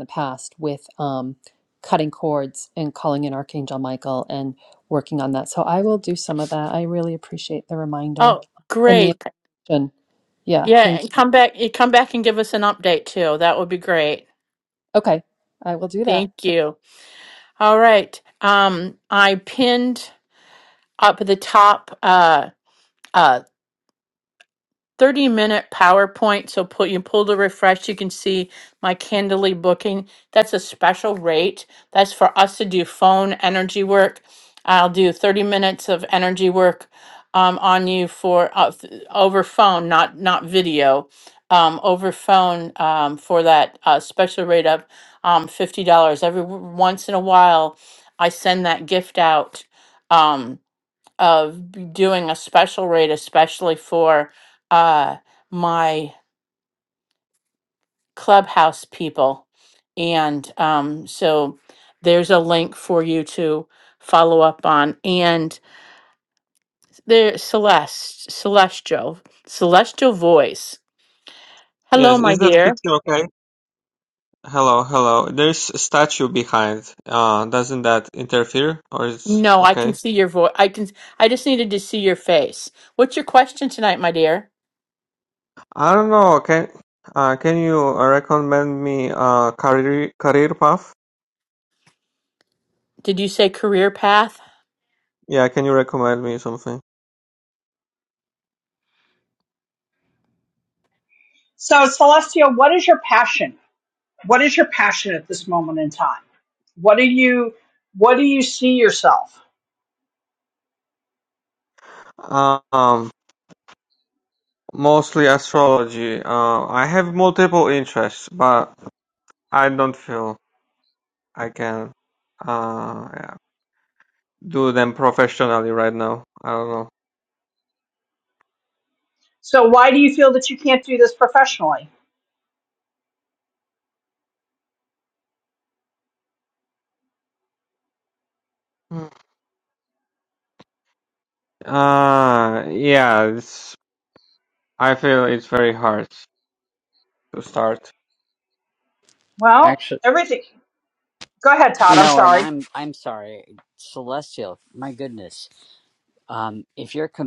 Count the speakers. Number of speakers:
5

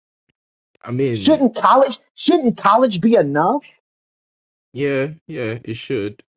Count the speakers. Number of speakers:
2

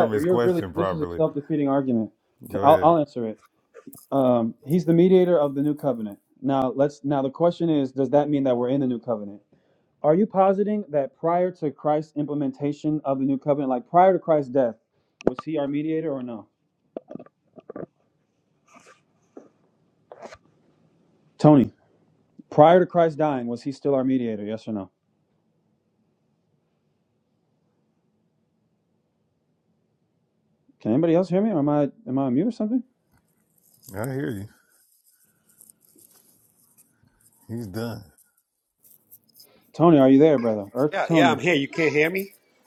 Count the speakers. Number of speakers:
3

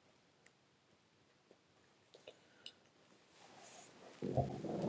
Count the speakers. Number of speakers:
0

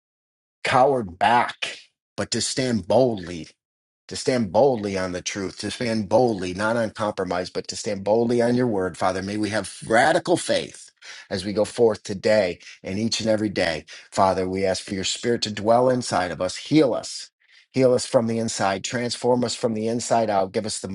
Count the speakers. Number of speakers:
1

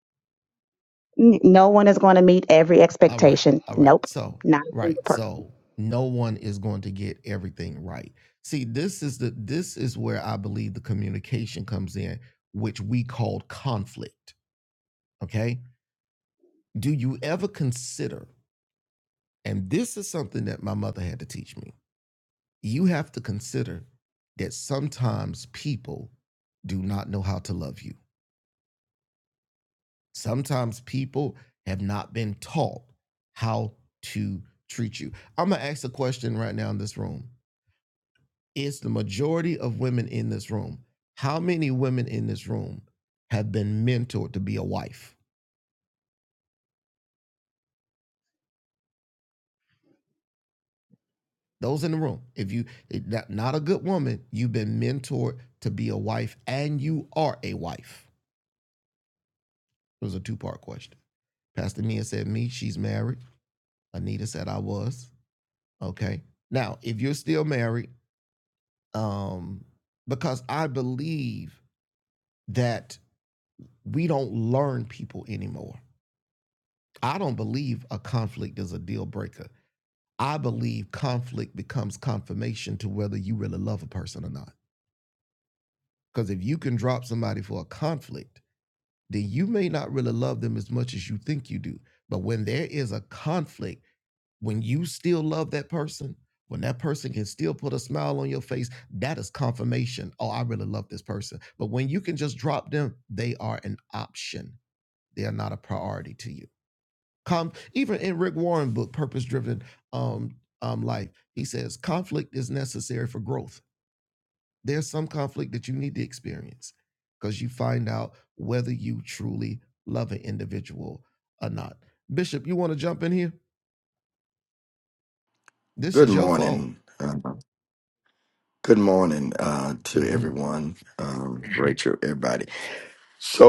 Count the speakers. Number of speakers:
3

